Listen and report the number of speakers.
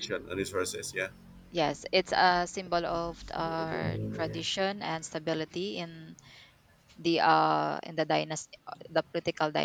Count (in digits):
2